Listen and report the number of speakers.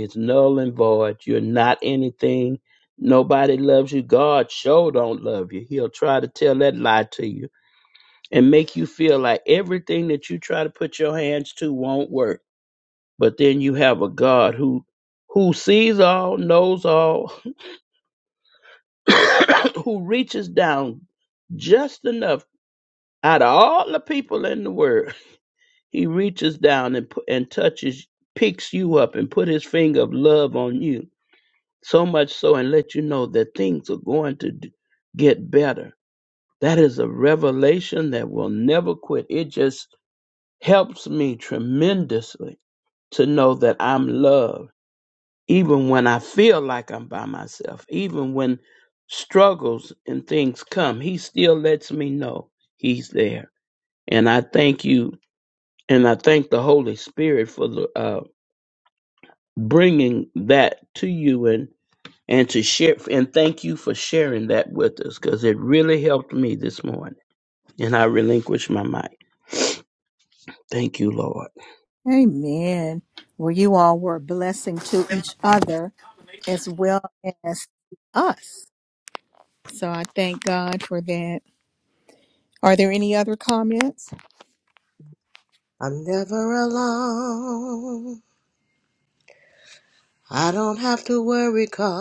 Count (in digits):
3